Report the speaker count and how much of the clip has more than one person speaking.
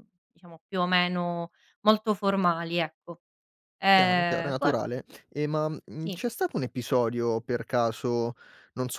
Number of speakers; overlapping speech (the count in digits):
2, about 10%